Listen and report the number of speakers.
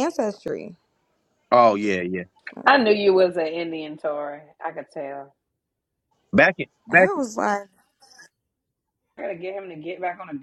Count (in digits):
3